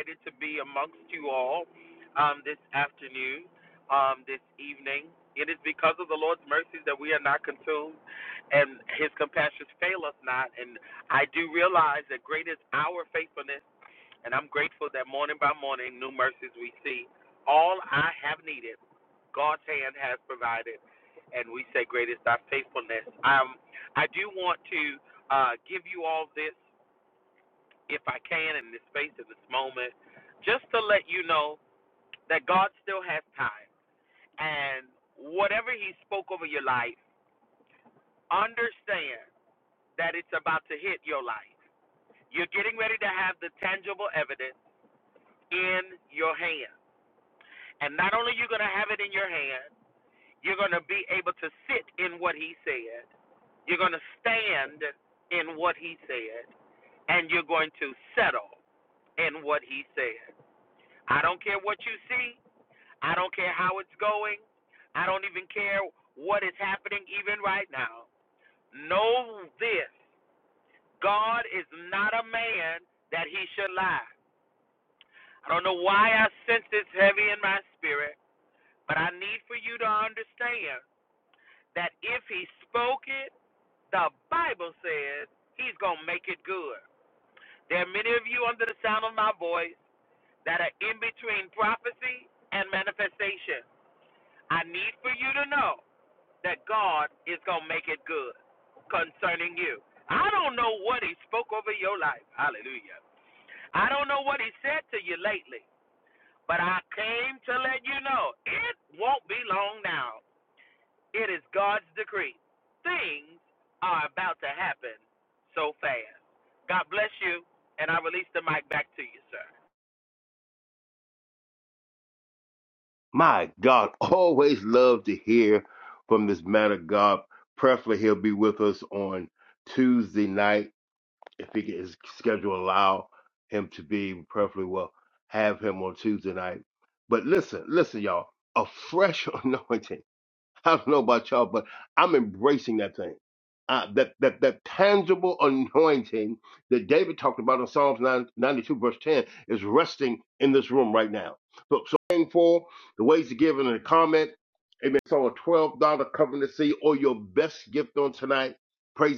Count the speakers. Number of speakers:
2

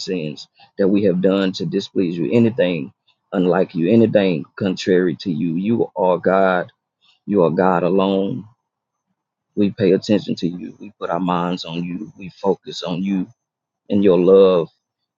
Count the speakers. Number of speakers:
1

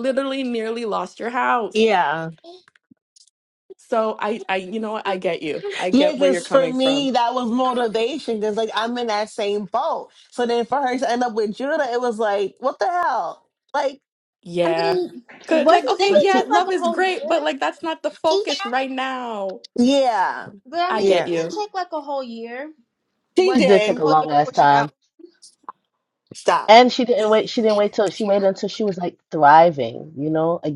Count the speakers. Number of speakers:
4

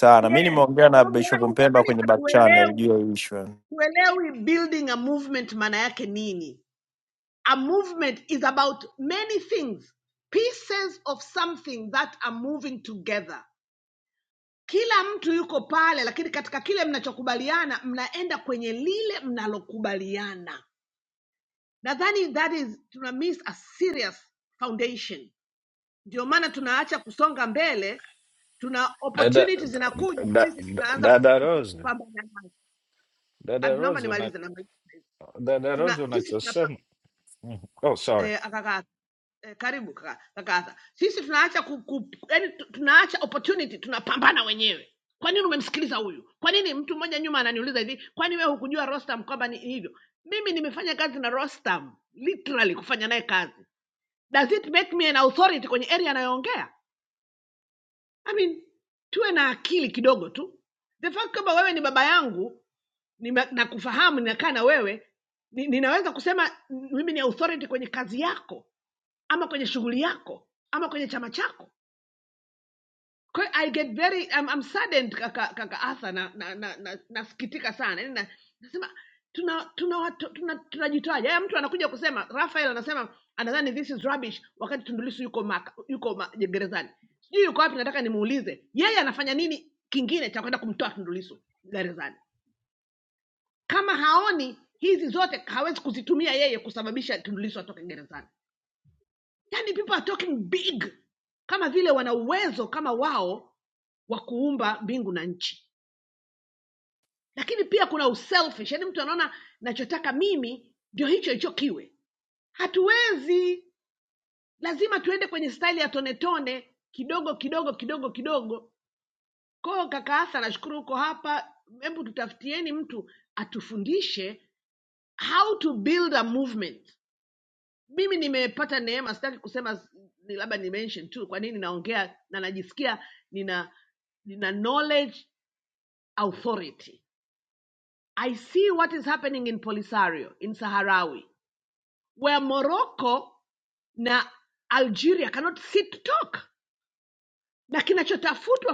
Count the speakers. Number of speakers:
3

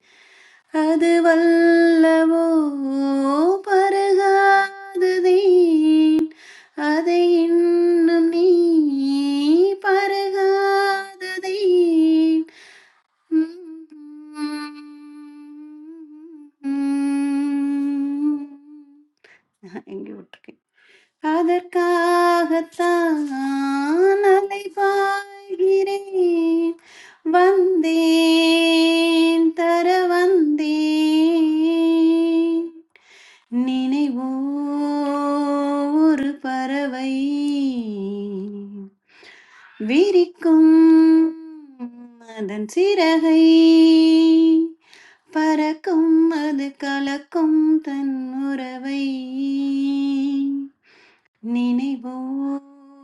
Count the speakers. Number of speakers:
1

